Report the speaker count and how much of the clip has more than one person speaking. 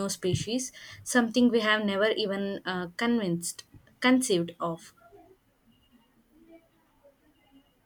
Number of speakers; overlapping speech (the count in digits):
1, no overlap